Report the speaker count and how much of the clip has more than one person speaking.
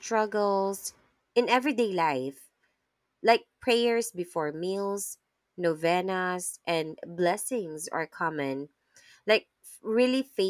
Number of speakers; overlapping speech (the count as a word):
one, no overlap